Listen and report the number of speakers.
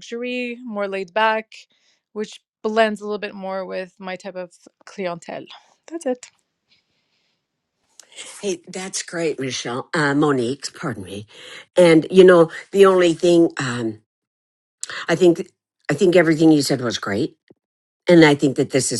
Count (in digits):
2